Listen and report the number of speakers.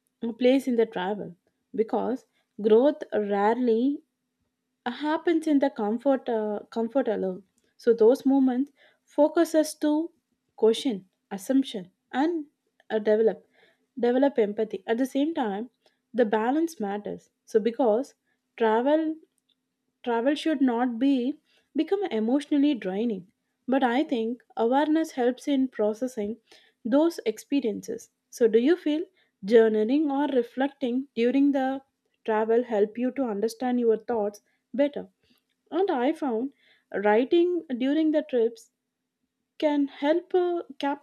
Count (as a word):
one